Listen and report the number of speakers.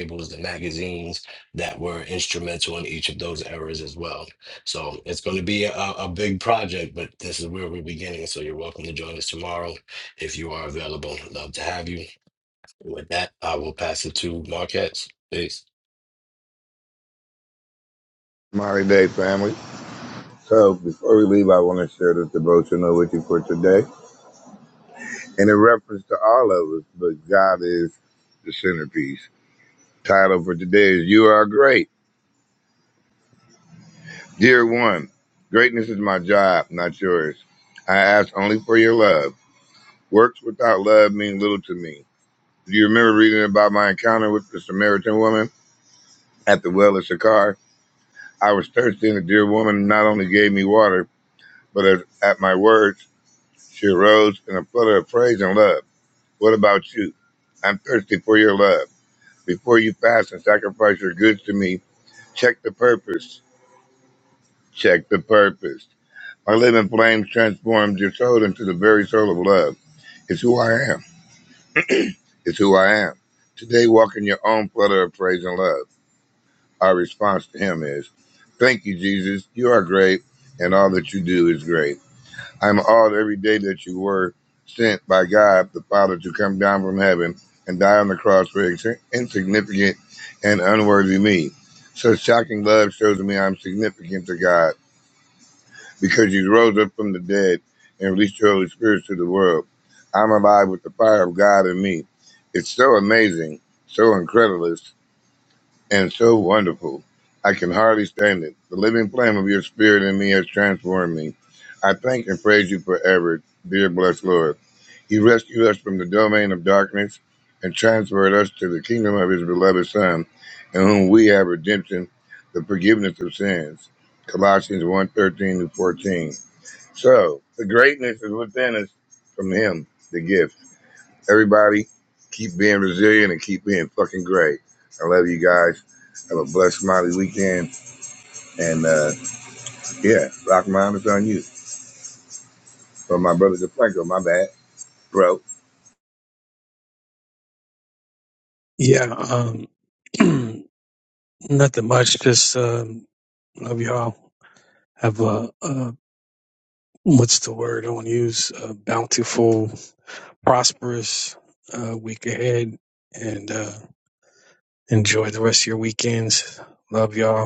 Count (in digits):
3